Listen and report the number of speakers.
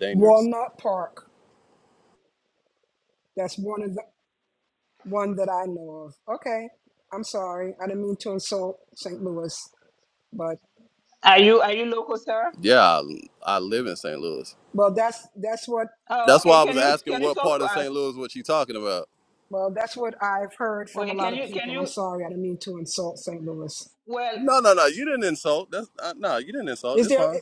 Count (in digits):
3